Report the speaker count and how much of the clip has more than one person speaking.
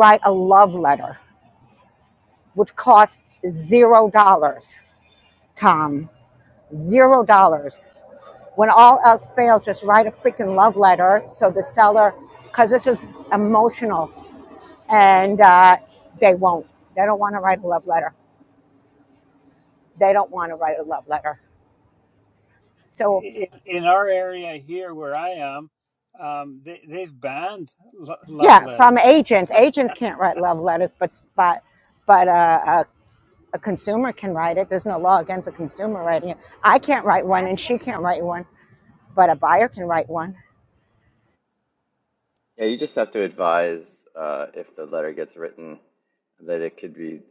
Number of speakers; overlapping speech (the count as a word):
three, about 2%